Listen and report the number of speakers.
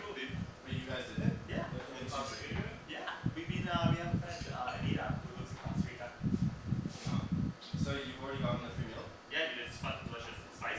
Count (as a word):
three